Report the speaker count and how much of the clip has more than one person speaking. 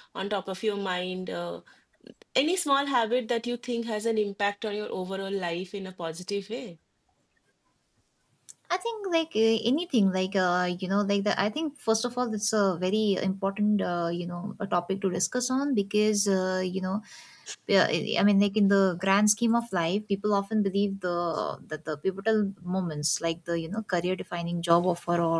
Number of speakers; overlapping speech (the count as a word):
two, no overlap